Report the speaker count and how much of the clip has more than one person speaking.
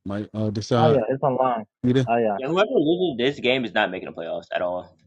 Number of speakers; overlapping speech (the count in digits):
3, about 5%